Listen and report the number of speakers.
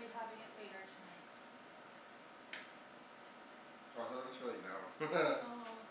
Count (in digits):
2